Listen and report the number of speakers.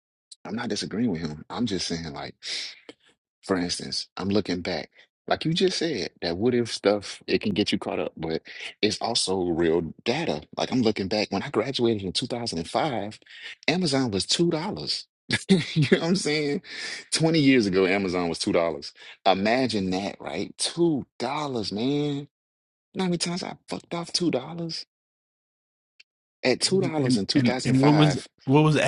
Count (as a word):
two